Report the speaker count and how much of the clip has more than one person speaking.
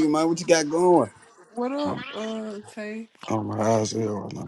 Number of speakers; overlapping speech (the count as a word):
three, about 4%